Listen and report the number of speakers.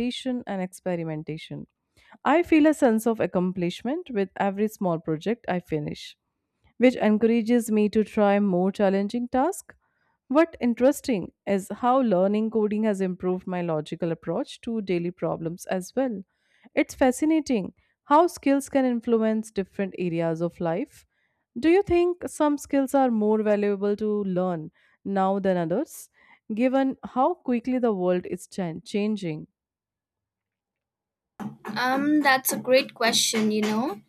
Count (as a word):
two